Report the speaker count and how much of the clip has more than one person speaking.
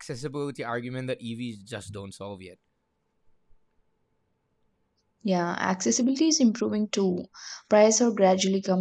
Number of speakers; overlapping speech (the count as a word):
two, no overlap